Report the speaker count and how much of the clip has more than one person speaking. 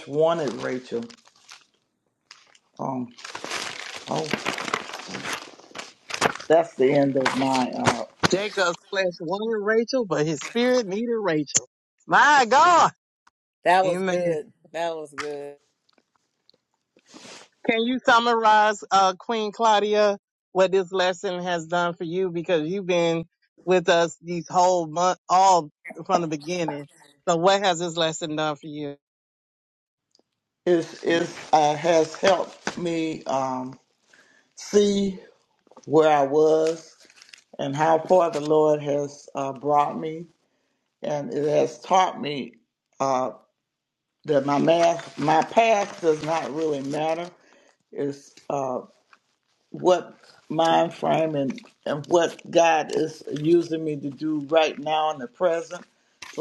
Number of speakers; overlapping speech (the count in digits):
3, about 1%